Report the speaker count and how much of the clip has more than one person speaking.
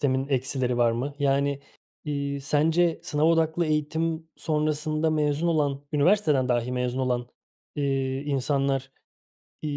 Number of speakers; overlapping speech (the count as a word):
one, no overlap